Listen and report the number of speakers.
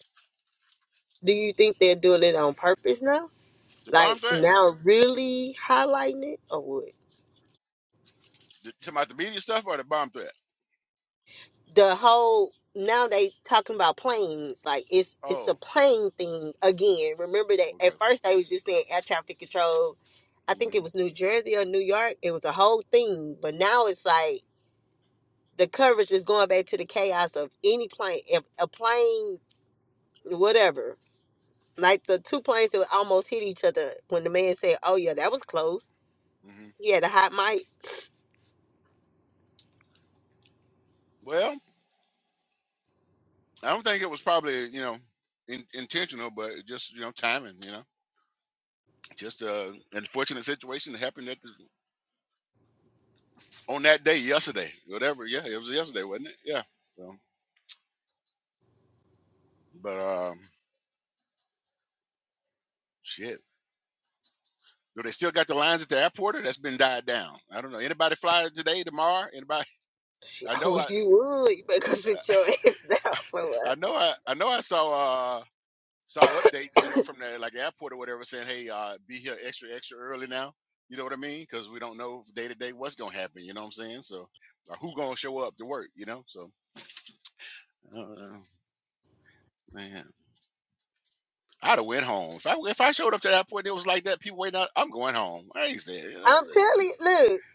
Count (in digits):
2